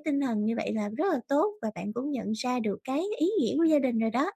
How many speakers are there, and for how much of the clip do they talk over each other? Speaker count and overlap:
1, no overlap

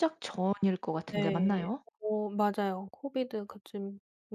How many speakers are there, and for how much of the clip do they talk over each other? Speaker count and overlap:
2, about 13%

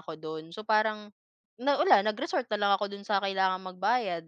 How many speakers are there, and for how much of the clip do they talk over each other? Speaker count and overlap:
1, no overlap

